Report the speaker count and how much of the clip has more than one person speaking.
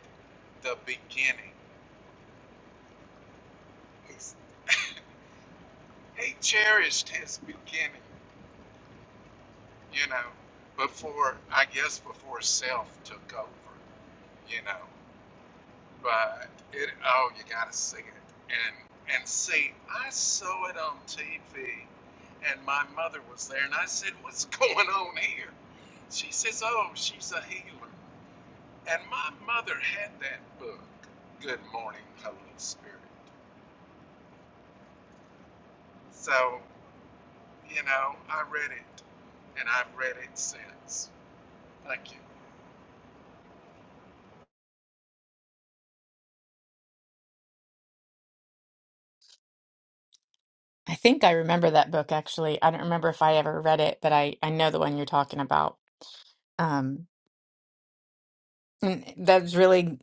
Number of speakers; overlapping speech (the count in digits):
2, no overlap